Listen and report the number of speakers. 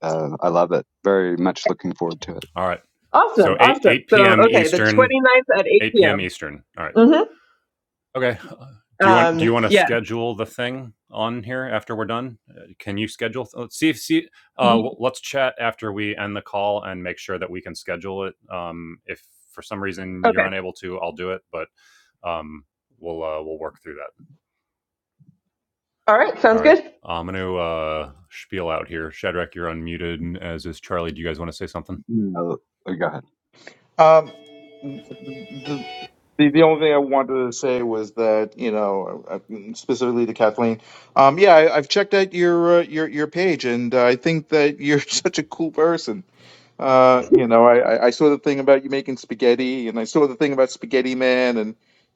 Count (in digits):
4